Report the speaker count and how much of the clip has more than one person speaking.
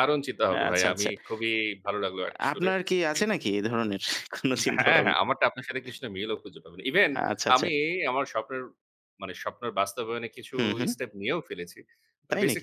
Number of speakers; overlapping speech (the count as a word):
two, about 18%